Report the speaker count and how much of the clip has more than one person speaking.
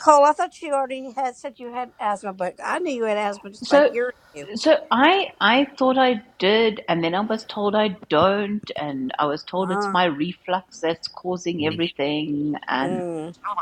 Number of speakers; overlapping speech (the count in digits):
2, about 7%